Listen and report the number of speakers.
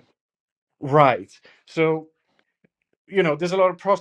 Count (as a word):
one